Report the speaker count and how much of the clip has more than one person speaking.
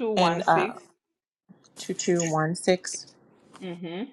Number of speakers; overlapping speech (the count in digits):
2, about 16%